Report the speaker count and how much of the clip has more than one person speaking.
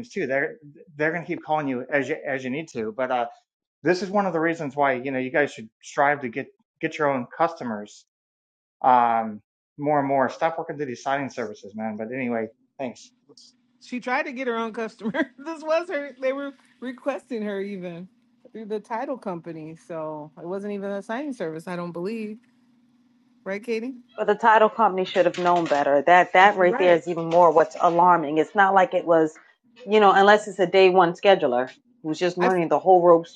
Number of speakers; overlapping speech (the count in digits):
3, about 2%